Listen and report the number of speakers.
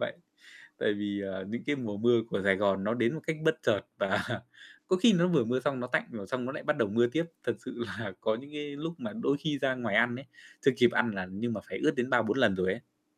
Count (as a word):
one